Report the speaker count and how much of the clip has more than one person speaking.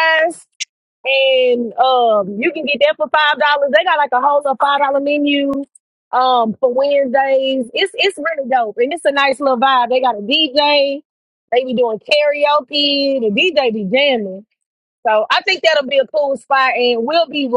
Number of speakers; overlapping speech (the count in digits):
1, no overlap